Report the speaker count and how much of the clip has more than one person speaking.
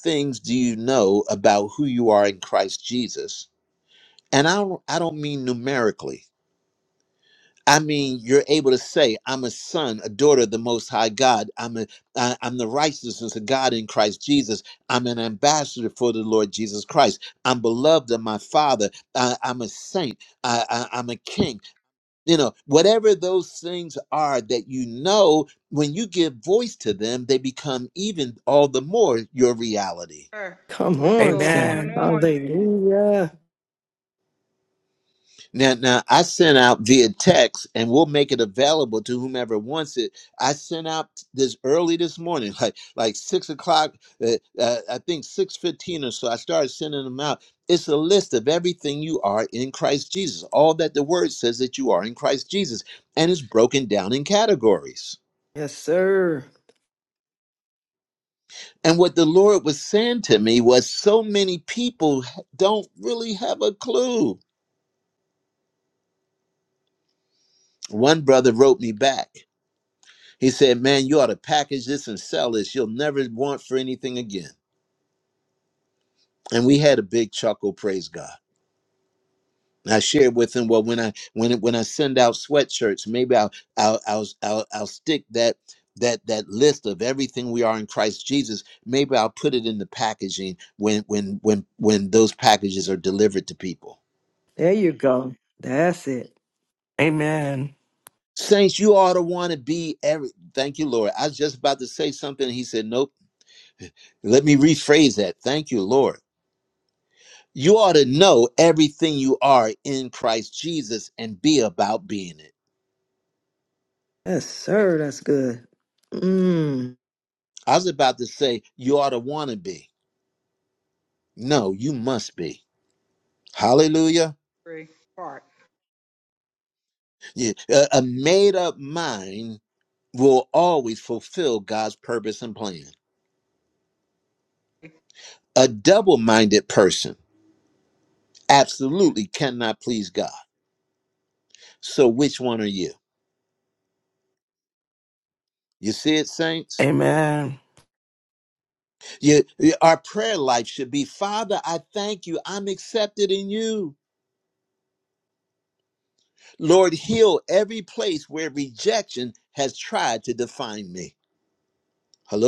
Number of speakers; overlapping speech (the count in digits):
4, about 1%